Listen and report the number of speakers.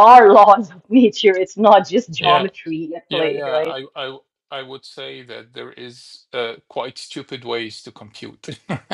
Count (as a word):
two